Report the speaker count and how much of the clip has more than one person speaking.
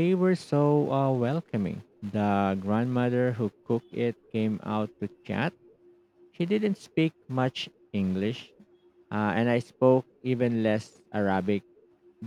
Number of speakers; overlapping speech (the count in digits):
1, no overlap